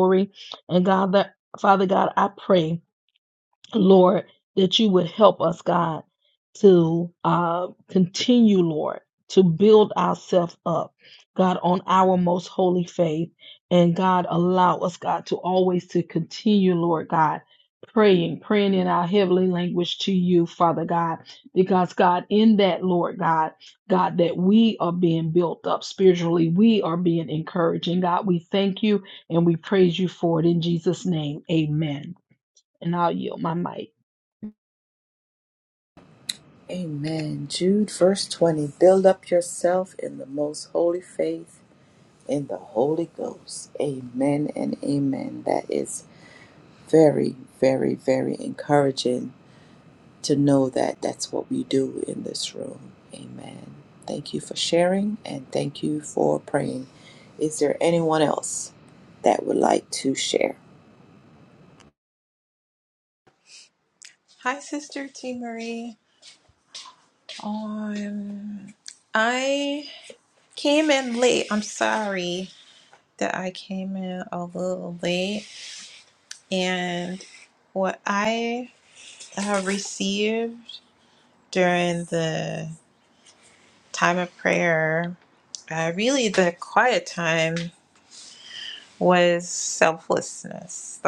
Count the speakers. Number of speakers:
three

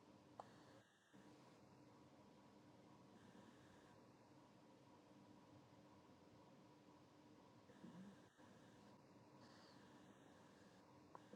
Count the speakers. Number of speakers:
zero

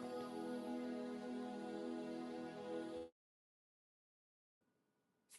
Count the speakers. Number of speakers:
zero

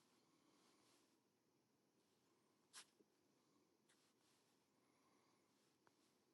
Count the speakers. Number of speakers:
zero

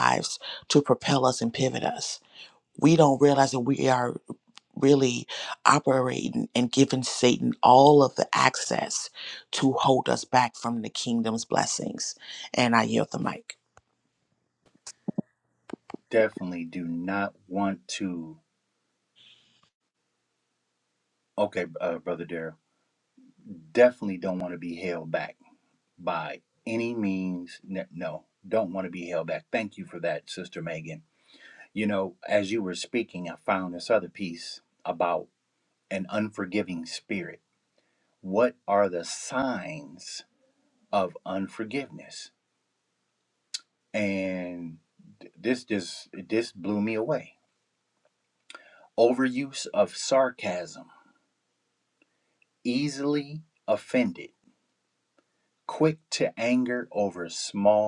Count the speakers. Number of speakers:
two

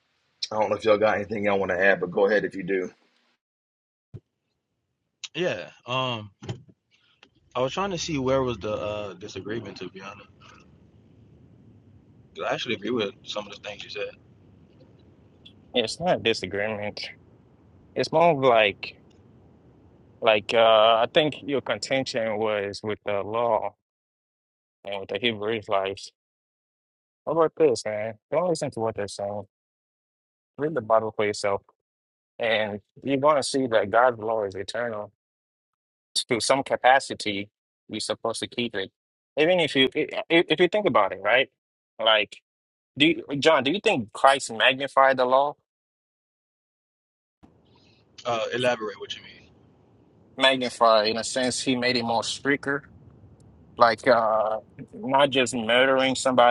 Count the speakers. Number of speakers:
three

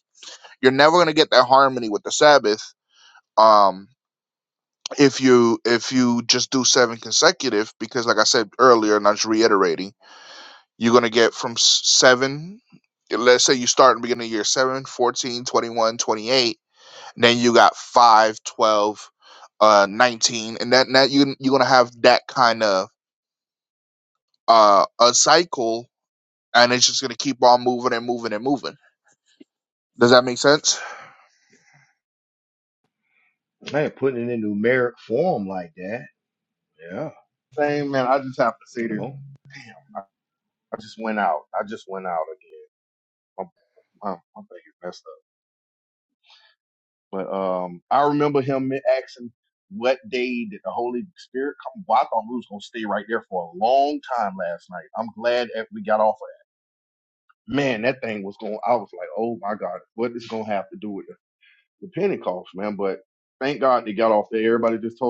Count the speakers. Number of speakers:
three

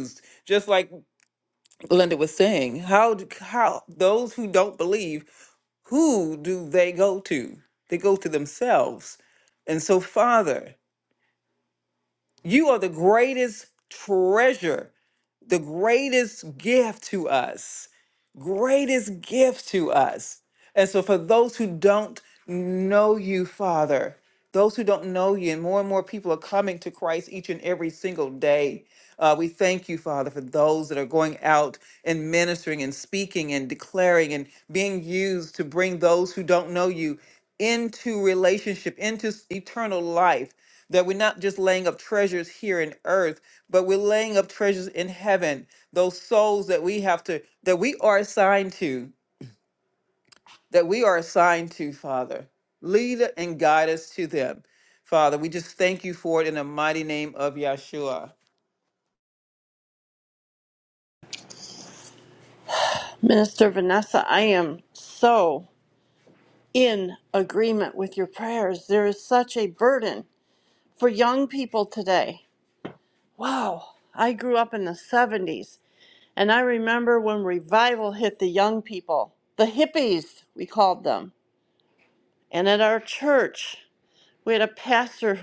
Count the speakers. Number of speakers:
two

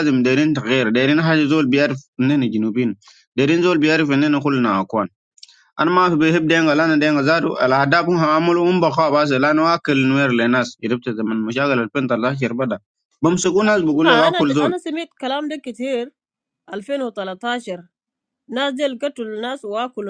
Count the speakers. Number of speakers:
two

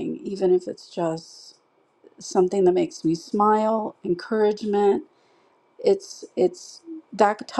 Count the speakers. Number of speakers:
one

